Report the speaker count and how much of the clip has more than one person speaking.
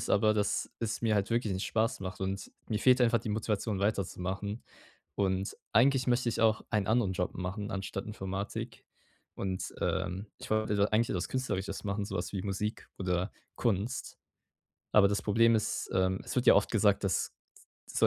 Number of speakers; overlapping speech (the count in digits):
1, no overlap